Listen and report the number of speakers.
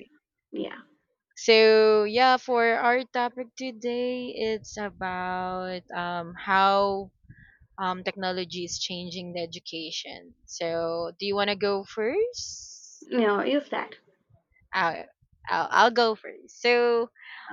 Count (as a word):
two